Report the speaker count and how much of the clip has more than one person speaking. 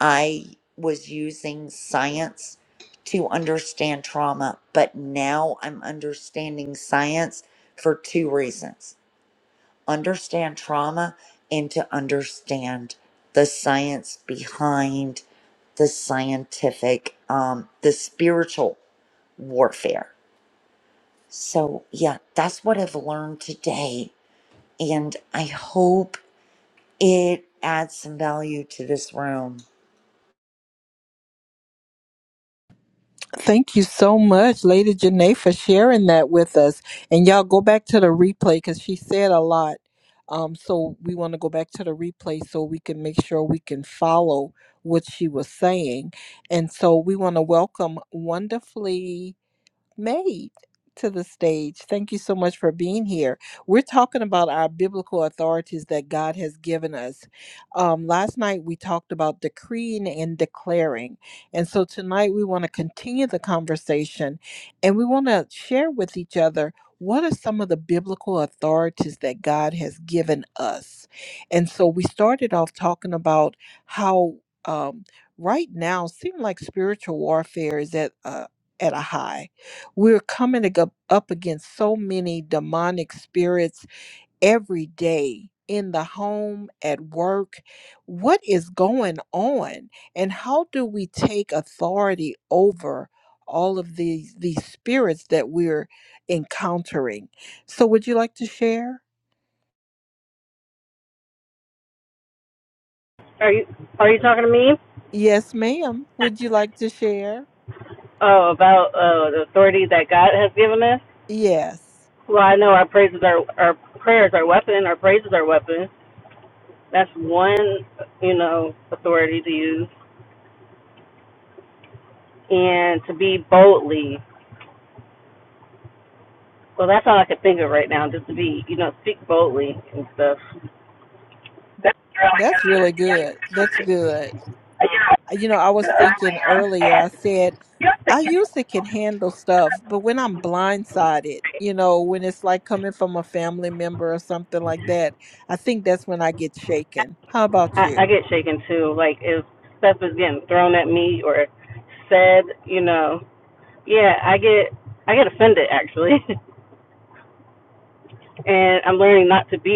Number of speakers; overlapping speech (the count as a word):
three, under 1%